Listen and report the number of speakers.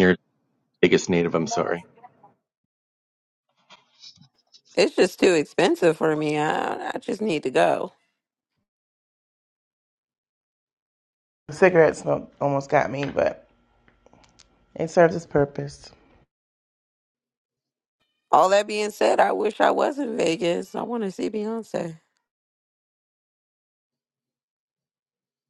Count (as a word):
three